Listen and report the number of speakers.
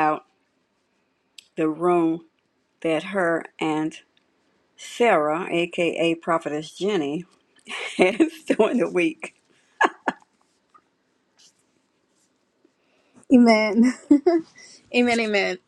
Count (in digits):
2